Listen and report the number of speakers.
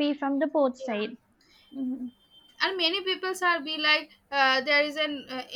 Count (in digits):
2